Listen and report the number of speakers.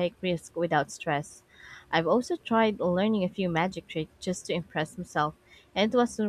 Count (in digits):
1